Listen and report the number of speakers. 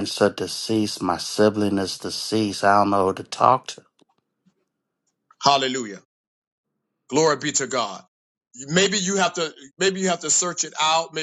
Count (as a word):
two